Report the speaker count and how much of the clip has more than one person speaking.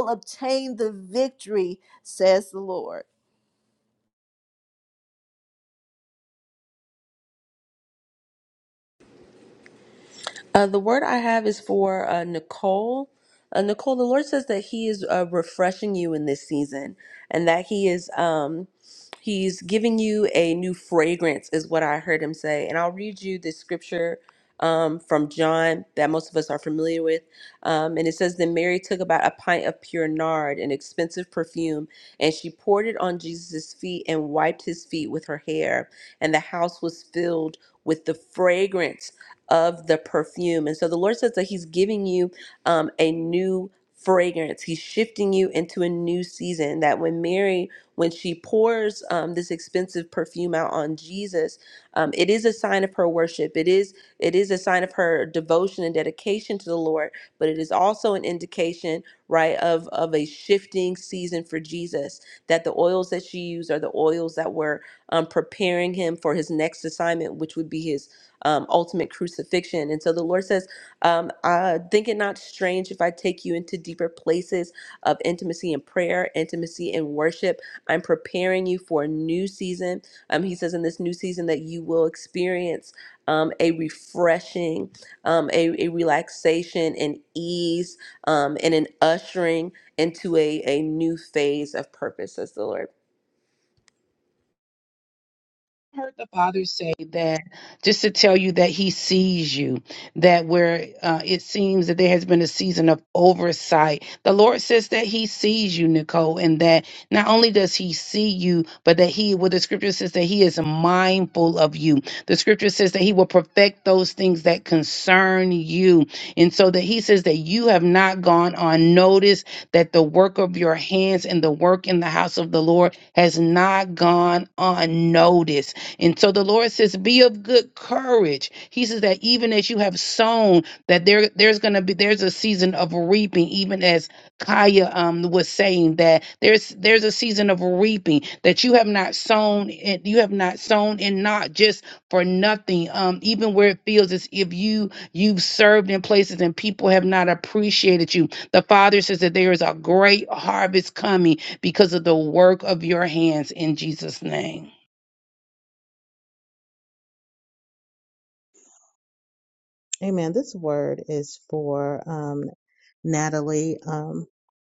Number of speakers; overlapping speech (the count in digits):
4, no overlap